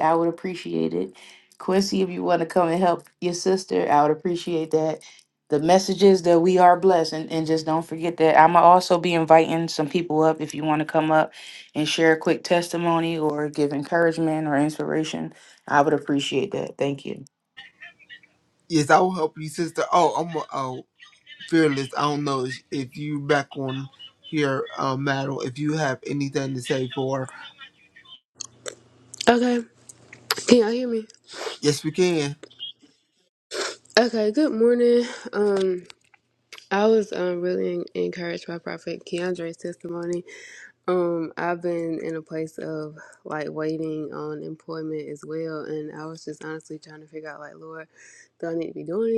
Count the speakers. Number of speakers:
three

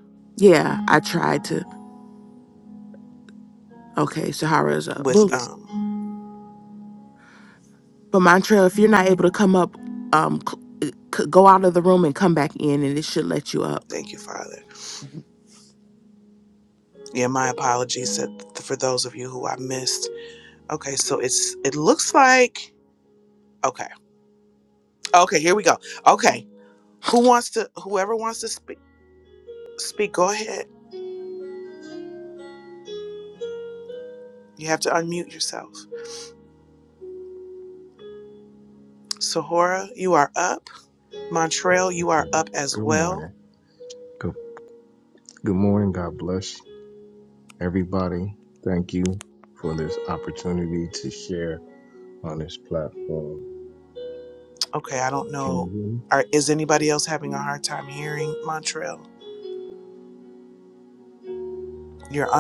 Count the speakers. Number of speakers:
three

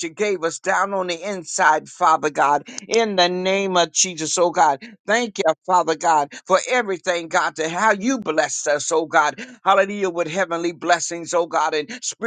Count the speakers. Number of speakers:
one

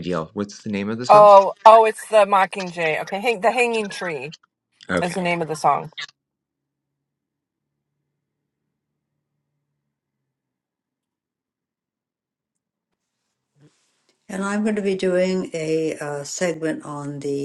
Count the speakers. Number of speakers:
three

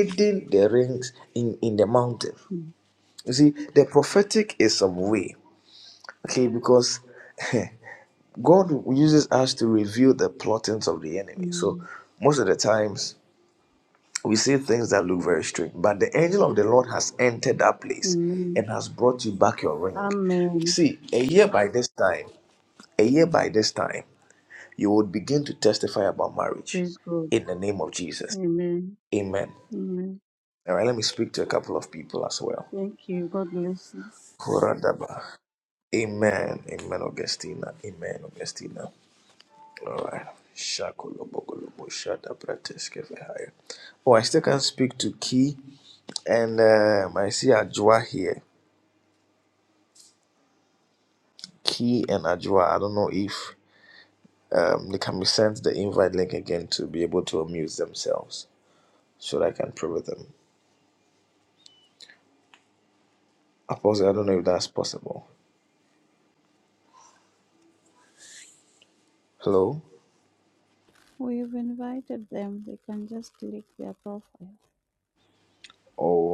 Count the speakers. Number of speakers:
three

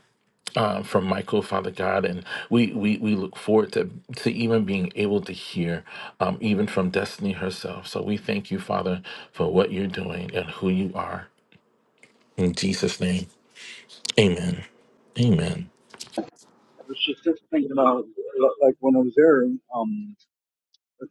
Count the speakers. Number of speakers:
two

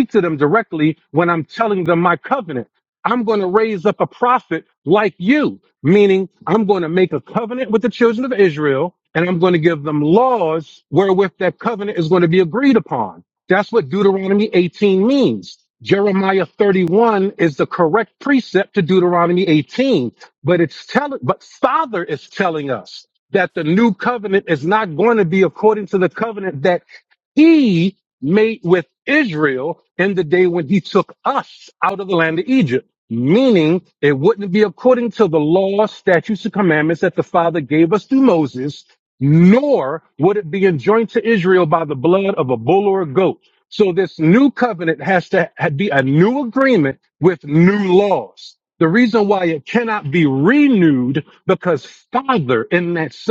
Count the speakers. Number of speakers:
one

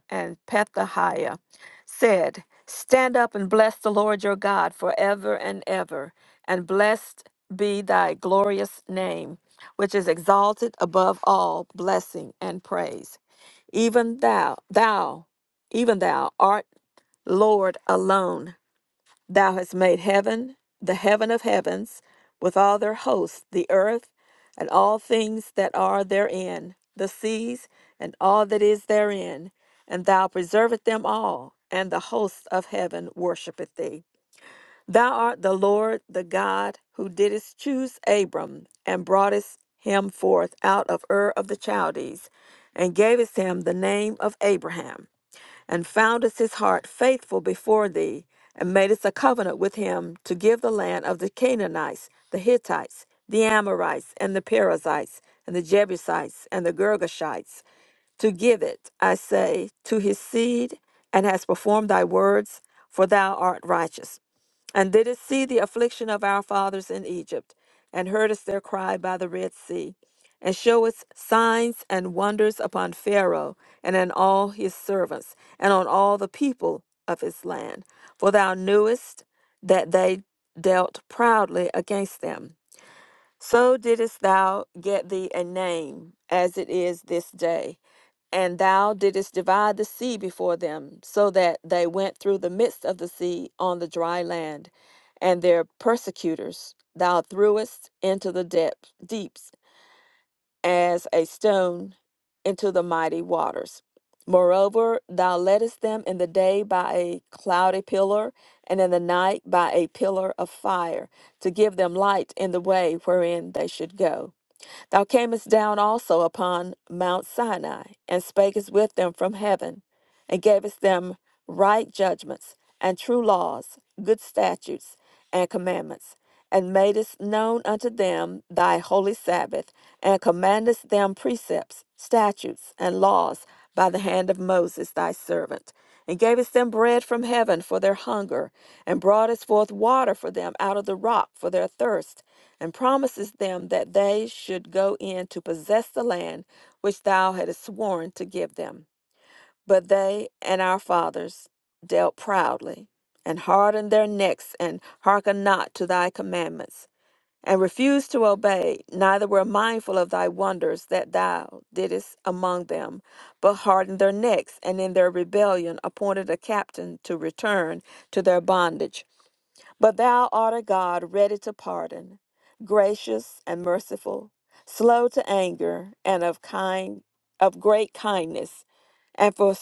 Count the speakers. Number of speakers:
one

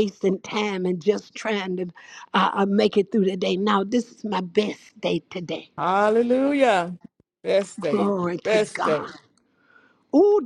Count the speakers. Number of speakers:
two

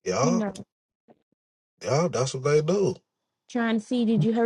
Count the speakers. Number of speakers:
two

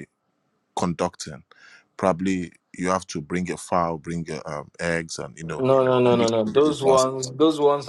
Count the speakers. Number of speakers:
two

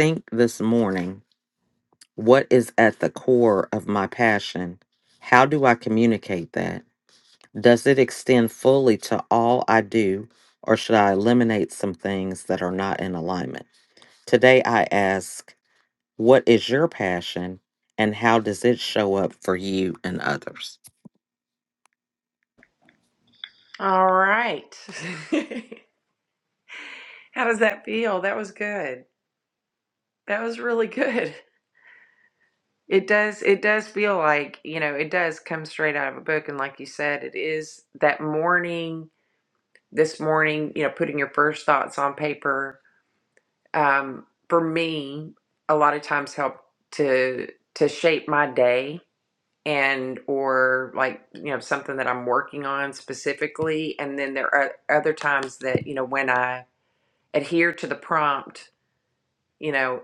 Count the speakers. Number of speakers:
two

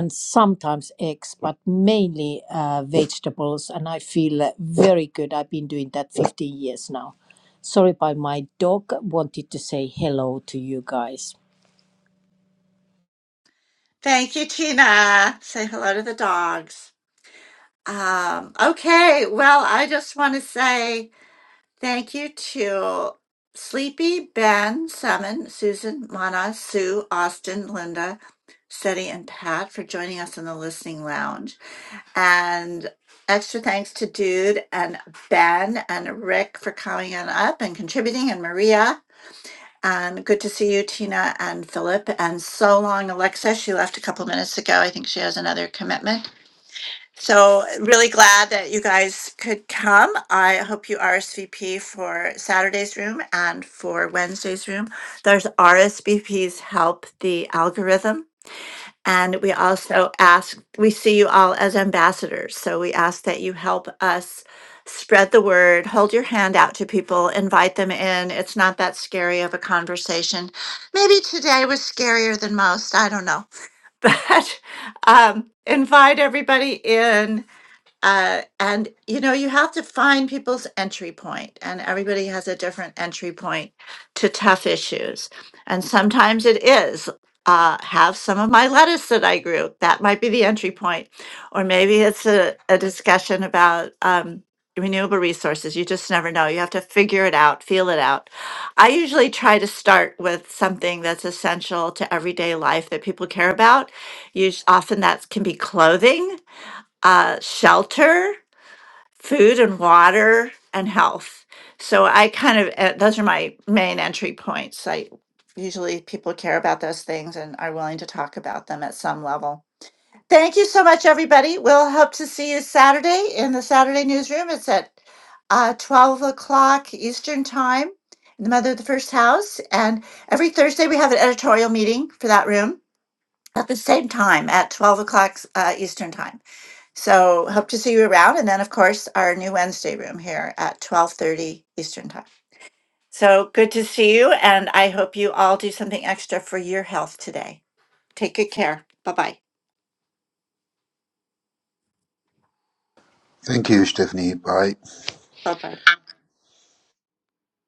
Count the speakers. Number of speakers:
three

